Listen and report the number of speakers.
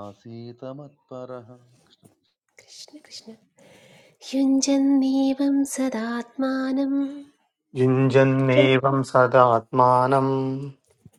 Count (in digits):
3